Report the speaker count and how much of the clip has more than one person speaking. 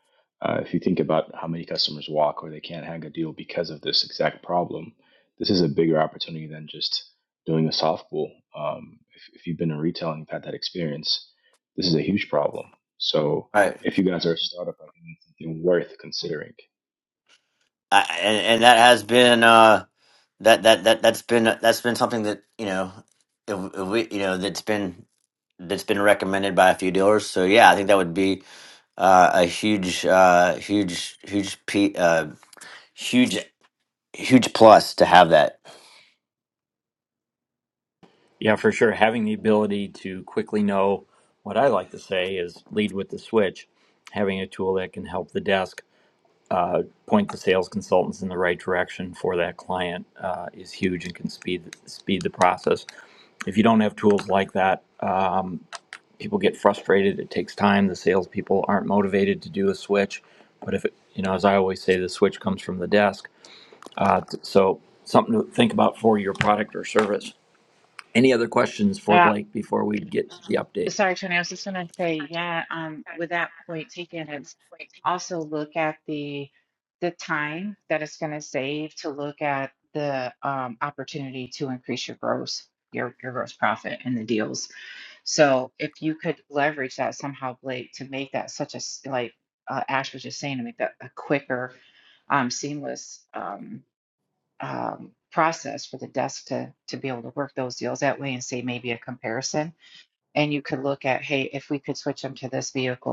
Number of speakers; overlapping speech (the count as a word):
four, under 1%